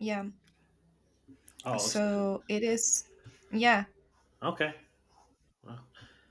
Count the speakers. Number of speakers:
2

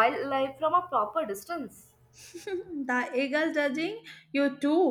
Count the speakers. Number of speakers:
2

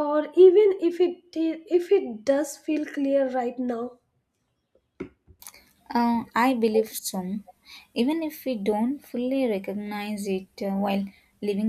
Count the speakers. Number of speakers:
2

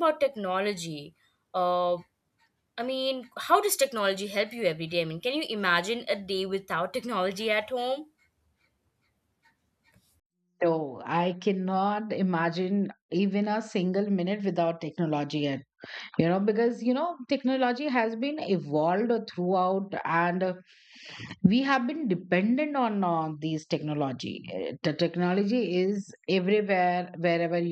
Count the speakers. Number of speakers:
2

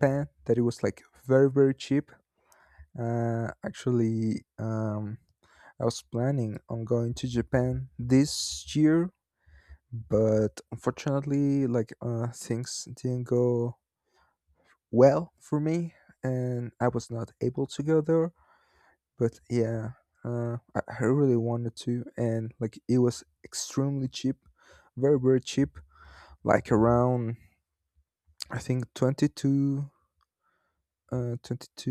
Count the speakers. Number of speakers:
1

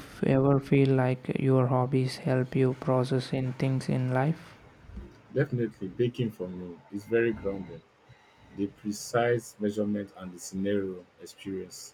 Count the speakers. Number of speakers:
2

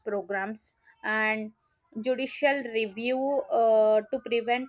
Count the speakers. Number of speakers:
1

